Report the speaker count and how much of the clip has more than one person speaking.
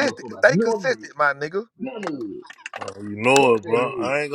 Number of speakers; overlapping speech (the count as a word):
three, about 43%